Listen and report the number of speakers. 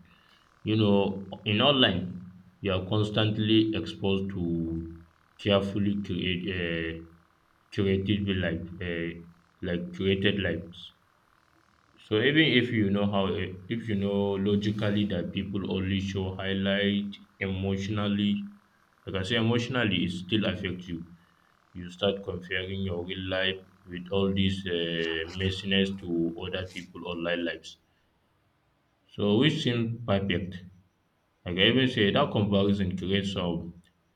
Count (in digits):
1